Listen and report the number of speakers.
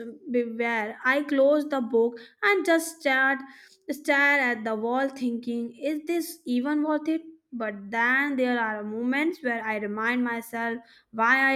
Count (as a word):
one